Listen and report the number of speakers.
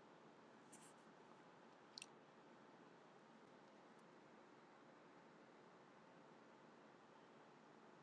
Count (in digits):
0